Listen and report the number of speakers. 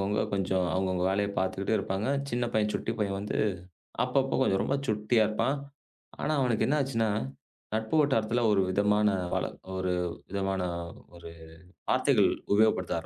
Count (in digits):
1